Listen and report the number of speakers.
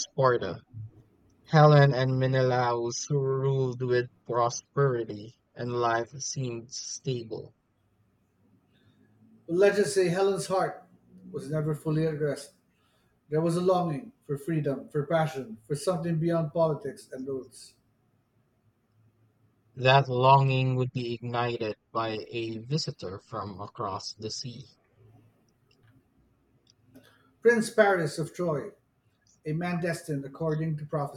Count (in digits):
2